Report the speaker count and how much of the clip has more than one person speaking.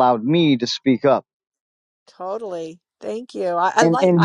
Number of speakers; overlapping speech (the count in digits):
2, about 11%